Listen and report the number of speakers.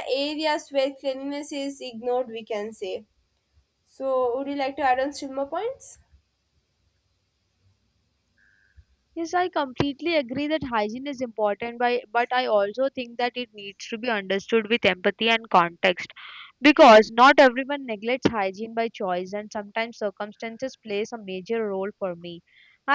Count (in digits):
2